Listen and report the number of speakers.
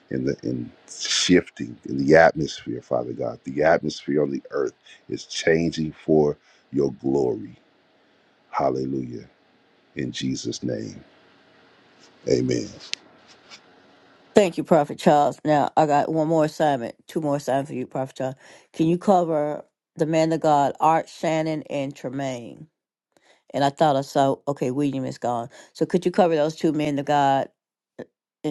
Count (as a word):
two